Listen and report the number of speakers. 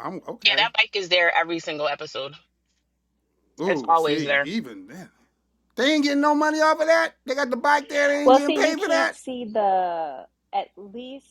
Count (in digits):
3